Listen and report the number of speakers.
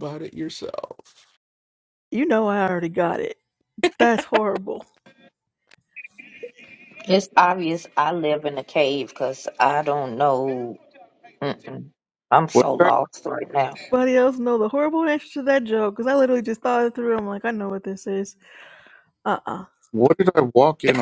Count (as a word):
four